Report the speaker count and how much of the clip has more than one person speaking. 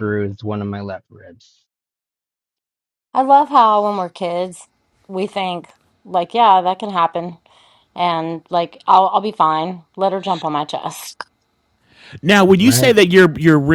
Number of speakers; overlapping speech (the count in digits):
3, about 3%